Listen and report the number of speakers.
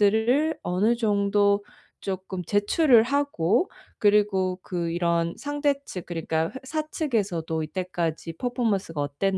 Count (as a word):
one